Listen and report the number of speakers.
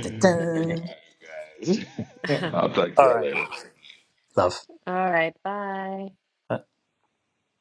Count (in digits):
3